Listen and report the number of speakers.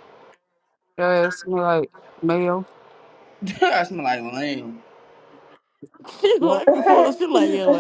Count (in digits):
3